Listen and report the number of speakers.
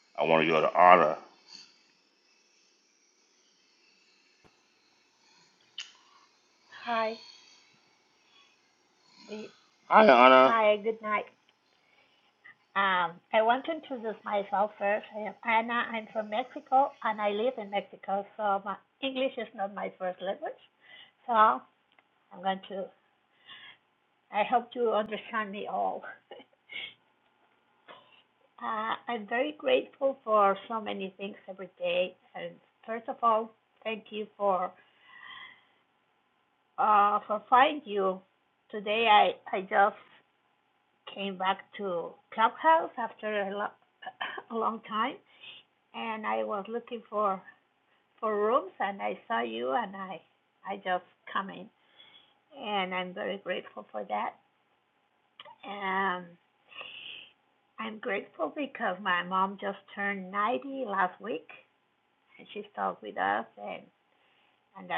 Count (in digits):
2